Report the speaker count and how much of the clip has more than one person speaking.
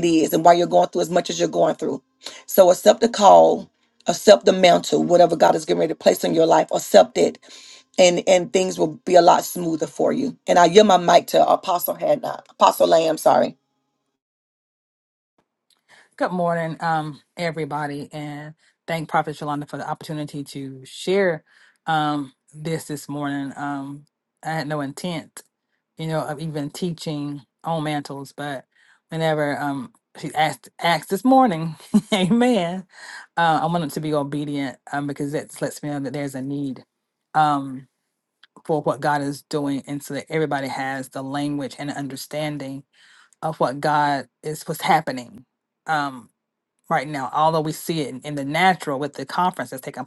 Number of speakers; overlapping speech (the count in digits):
2, no overlap